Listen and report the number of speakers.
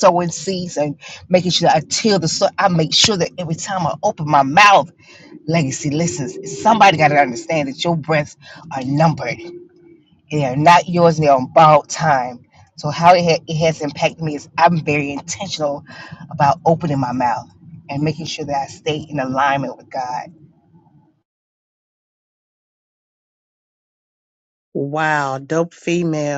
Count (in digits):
2